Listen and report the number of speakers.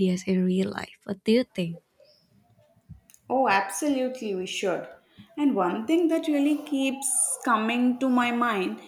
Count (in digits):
2